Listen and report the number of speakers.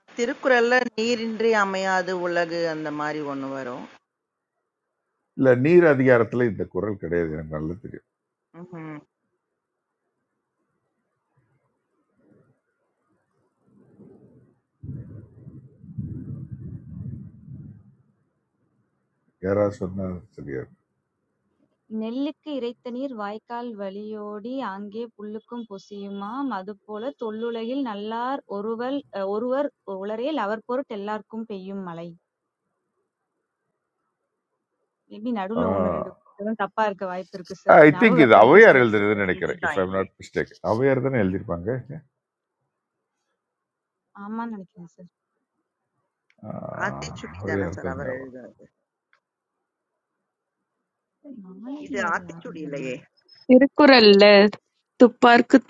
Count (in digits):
4